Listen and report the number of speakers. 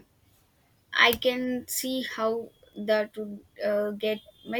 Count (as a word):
one